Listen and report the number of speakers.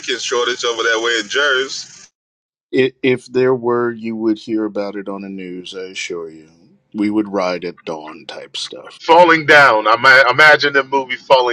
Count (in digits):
3